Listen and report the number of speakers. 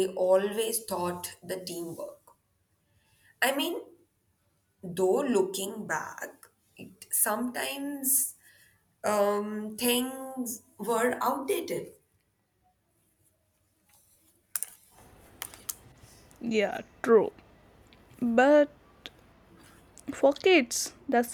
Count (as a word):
two